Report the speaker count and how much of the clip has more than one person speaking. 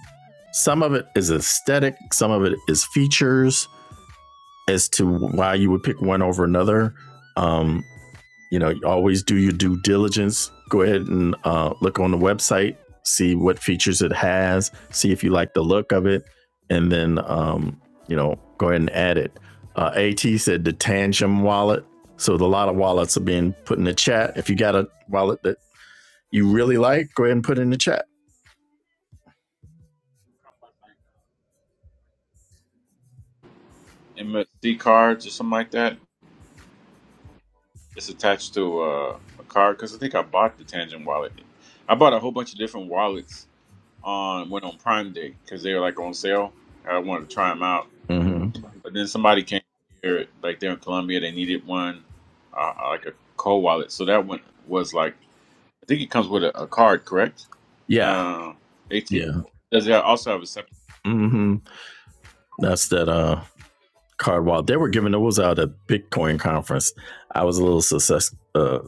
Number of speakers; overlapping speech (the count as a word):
two, under 1%